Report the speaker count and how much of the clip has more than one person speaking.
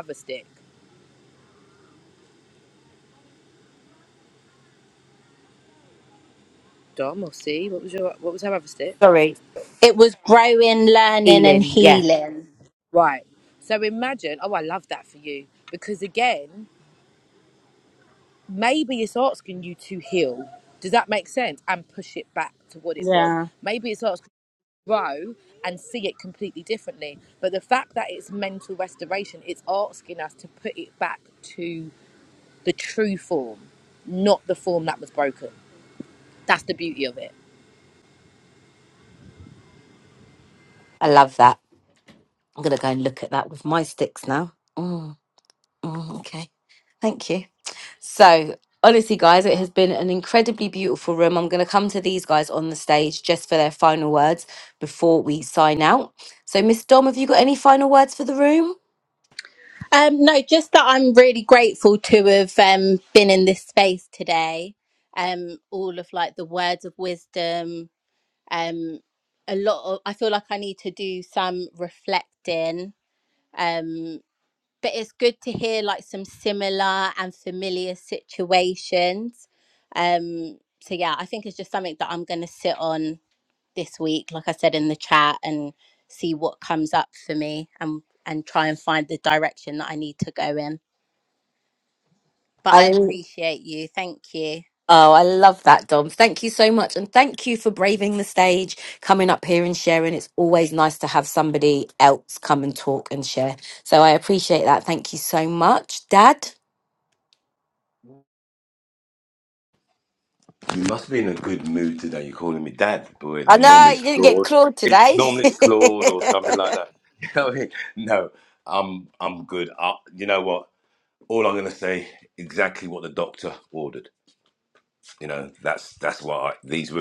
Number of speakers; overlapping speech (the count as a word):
four, about 2%